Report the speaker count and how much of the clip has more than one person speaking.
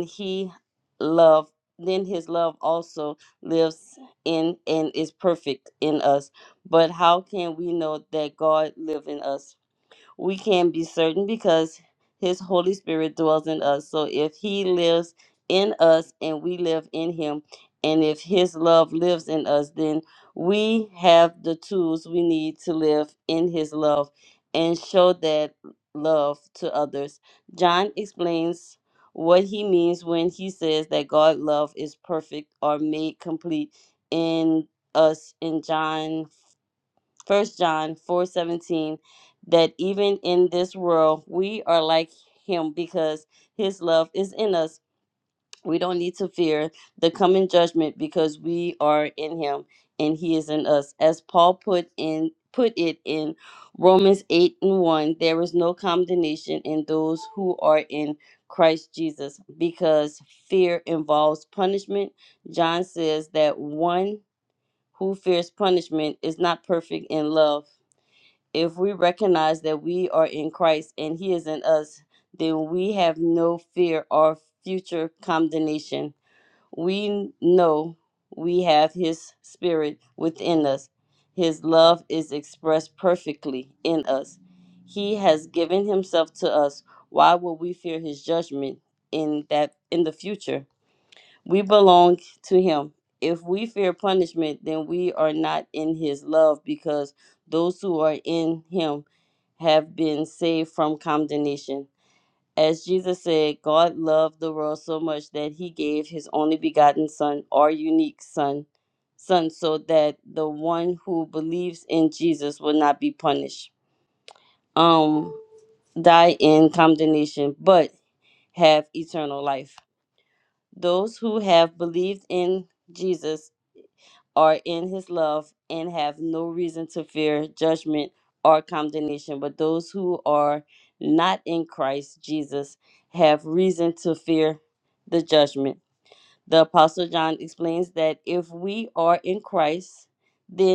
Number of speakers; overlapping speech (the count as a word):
one, no overlap